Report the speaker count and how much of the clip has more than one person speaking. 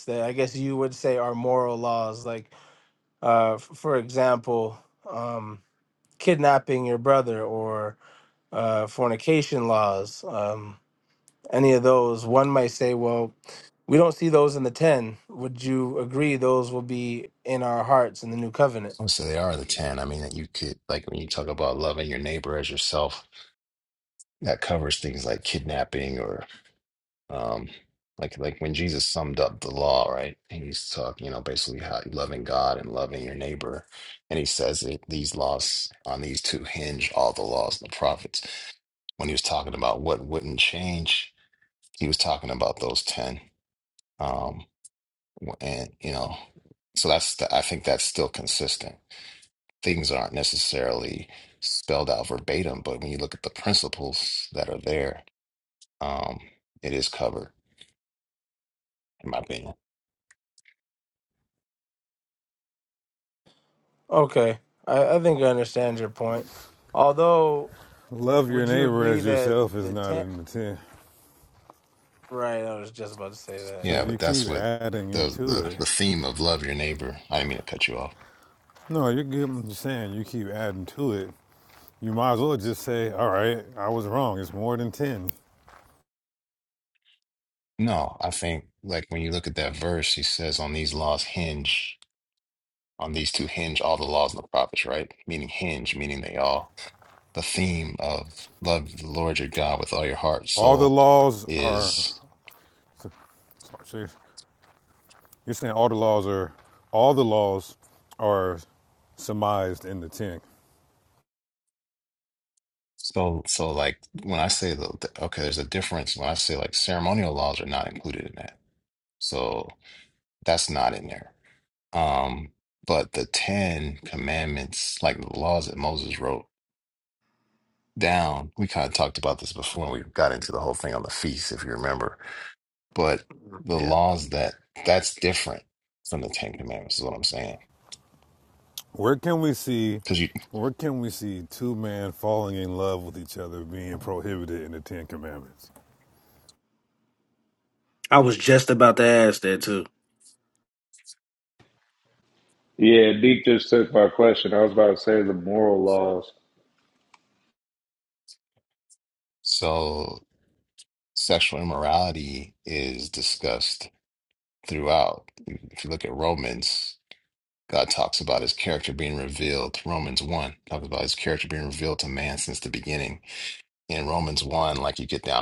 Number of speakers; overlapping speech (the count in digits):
5, about 3%